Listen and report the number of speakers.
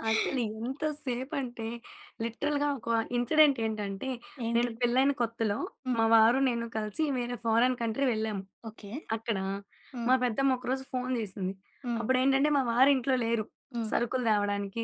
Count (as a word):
two